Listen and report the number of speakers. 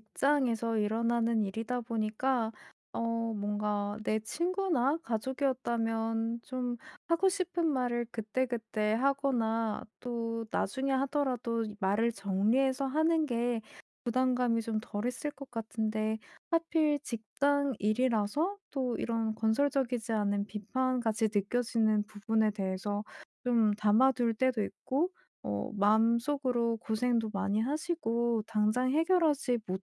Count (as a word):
one